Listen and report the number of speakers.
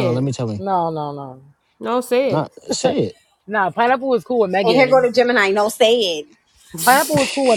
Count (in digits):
4